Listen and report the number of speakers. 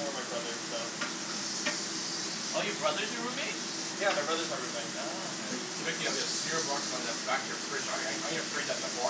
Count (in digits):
3